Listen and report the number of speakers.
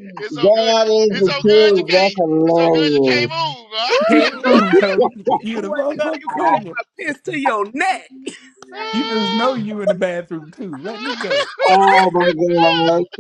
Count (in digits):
4